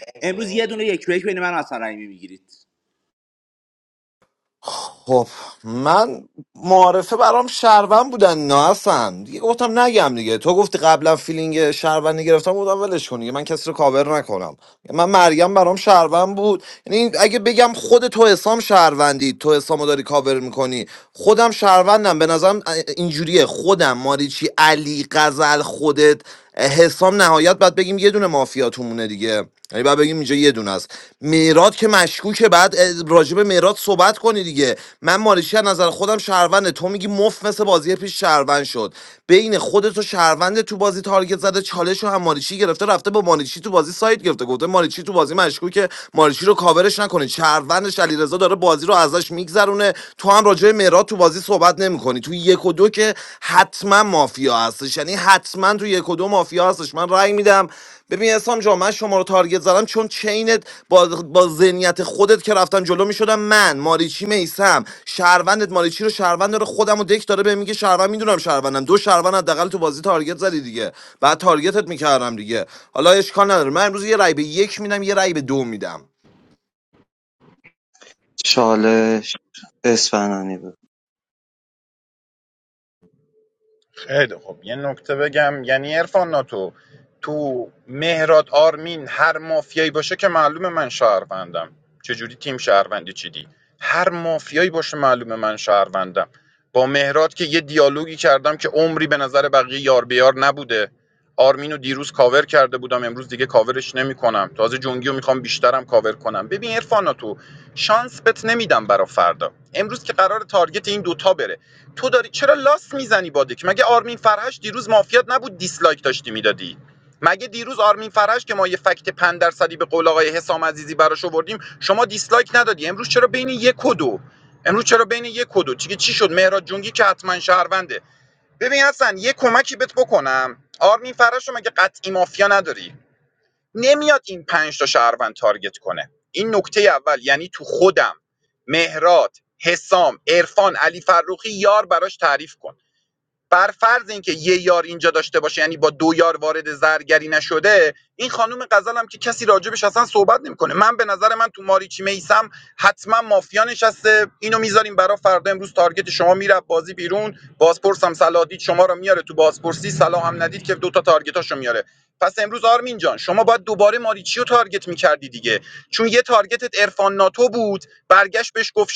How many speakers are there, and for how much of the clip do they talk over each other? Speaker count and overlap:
4, no overlap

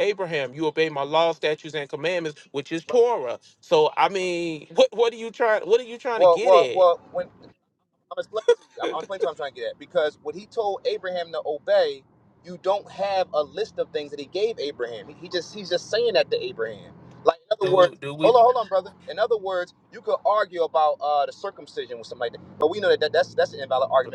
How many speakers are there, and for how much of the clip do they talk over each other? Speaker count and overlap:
2, about 4%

